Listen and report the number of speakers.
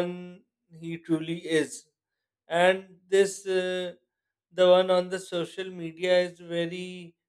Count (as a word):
one